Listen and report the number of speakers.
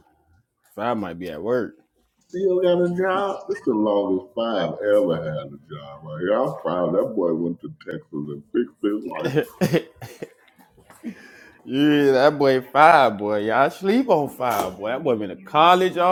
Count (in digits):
2